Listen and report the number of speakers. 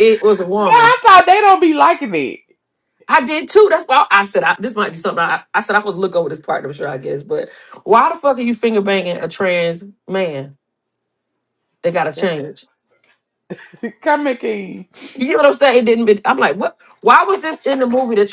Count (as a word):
two